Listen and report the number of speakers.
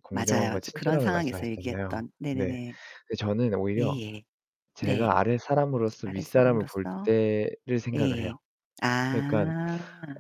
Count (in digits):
2